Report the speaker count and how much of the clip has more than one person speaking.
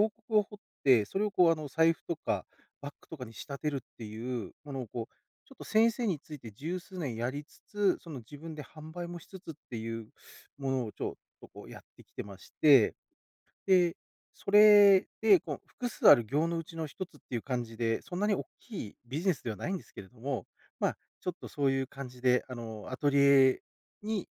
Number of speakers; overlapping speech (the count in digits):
1, no overlap